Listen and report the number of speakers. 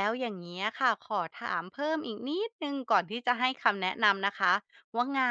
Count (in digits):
1